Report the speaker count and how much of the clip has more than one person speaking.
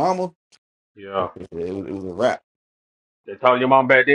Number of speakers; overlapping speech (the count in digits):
2, about 4%